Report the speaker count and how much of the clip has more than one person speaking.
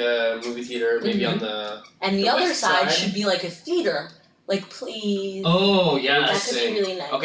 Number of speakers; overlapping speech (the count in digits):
3, about 34%